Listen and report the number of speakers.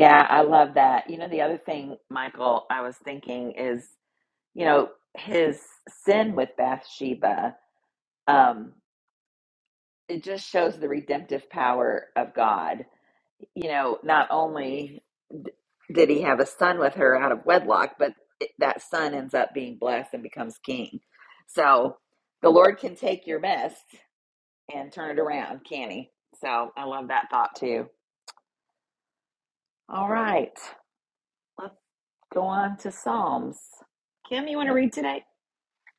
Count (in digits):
1